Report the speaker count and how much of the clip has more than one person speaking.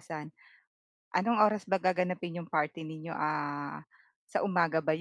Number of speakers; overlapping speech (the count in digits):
1, no overlap